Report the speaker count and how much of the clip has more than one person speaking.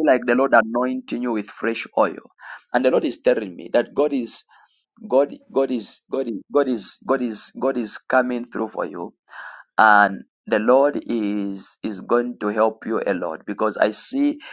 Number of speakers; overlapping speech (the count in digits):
1, no overlap